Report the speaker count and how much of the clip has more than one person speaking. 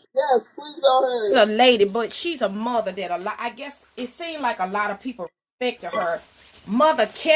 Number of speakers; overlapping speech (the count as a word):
two, about 1%